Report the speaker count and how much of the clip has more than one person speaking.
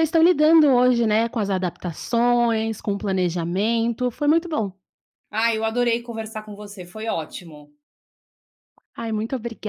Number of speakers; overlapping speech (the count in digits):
2, no overlap